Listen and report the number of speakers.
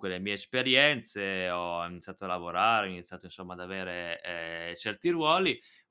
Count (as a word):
one